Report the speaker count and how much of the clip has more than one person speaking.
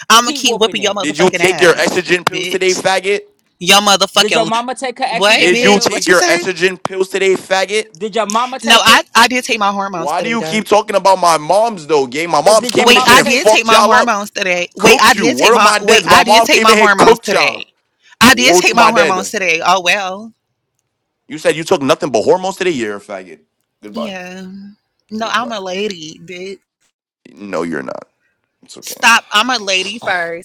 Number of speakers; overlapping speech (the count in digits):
3, about 35%